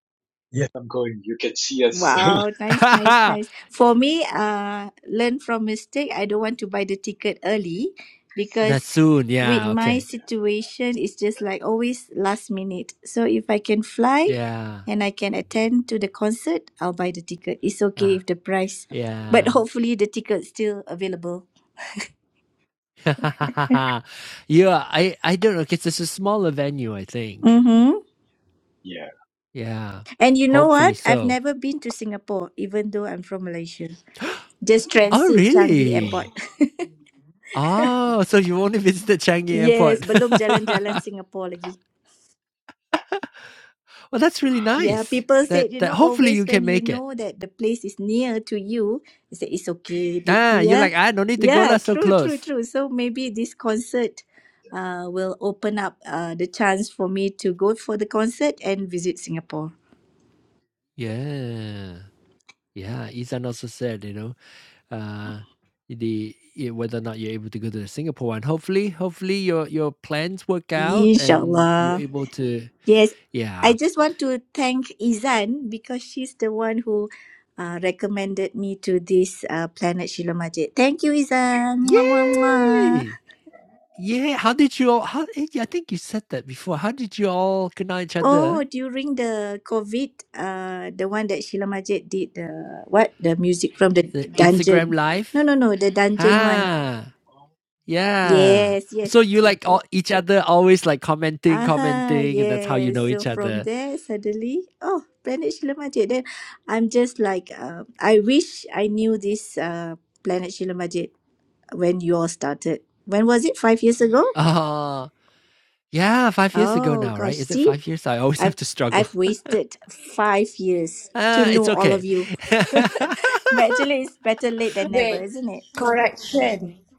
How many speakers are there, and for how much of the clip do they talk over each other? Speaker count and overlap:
4, about 14%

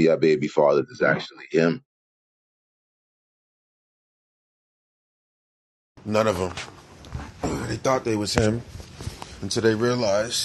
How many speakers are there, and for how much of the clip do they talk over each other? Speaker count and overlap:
2, no overlap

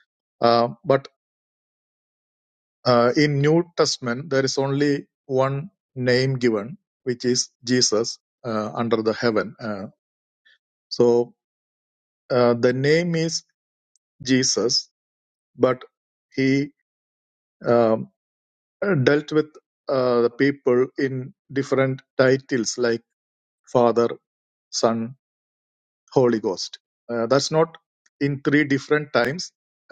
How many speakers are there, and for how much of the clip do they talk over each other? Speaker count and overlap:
1, no overlap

